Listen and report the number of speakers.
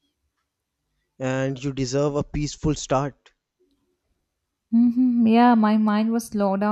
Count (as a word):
two